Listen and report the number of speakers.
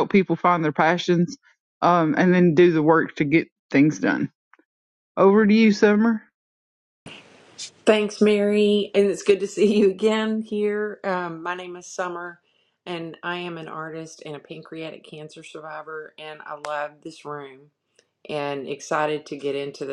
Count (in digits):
2